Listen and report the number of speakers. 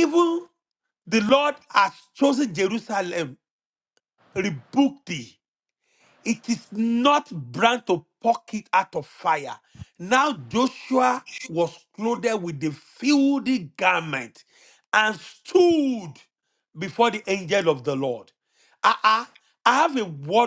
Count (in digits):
1